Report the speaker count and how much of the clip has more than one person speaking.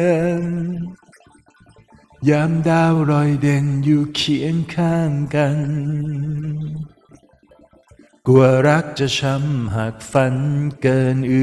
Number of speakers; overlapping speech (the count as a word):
one, no overlap